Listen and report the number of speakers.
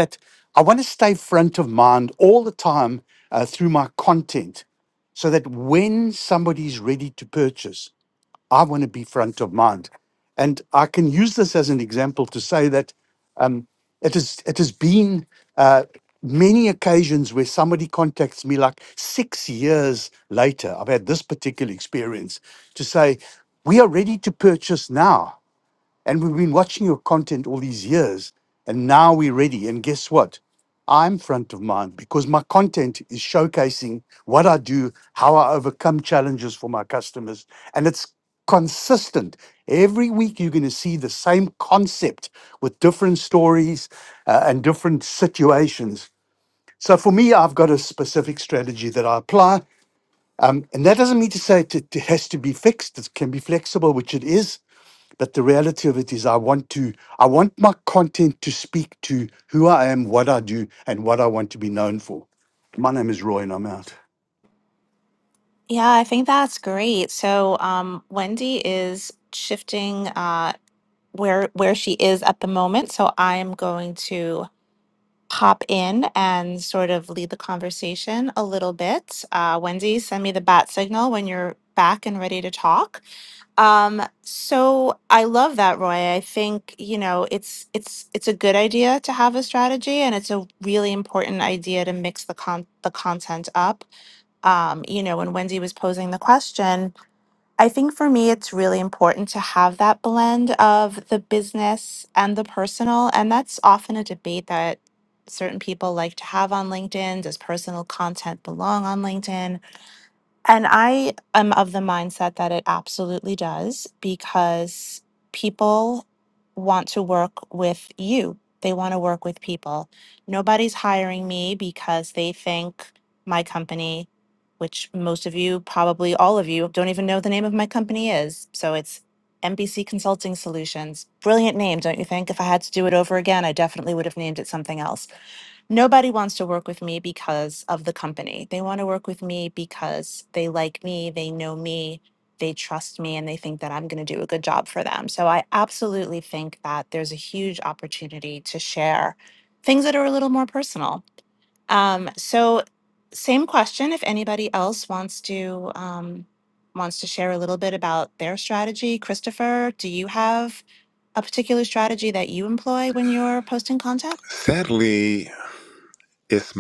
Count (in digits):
3